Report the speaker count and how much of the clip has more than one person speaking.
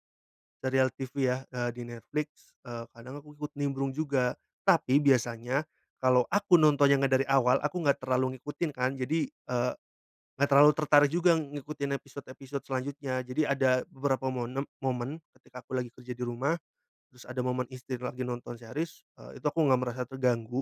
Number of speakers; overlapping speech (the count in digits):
1, no overlap